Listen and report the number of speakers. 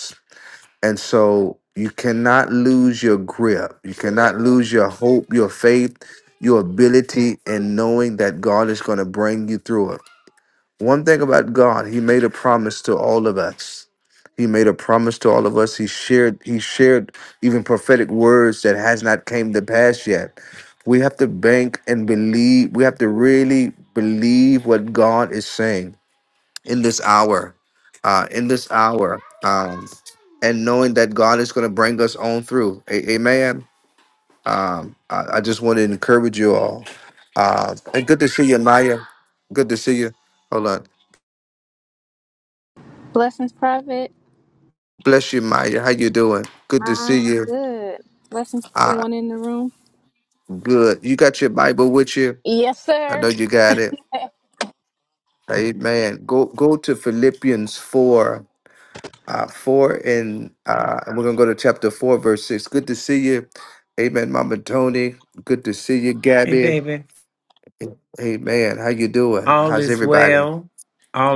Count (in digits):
3